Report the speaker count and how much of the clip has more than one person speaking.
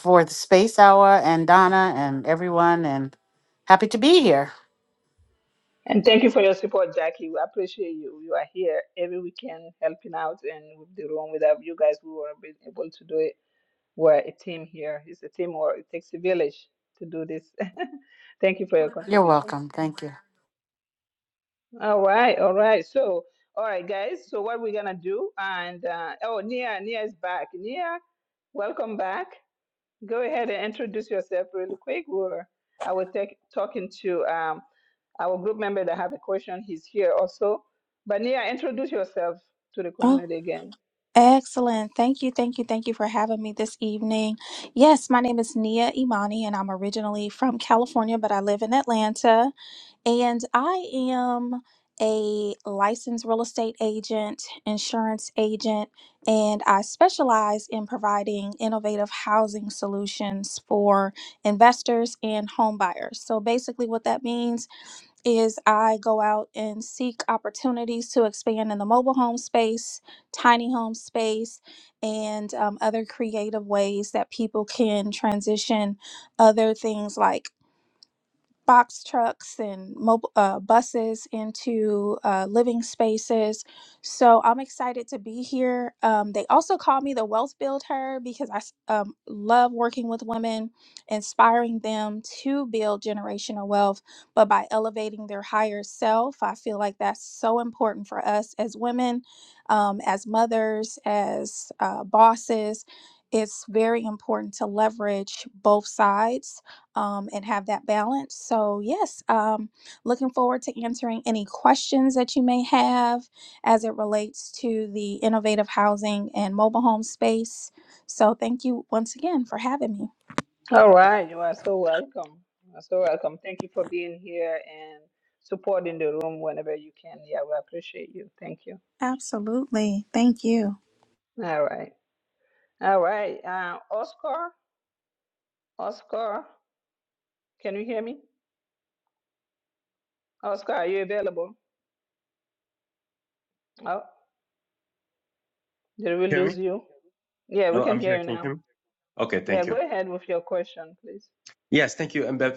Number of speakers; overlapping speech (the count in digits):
4, about 1%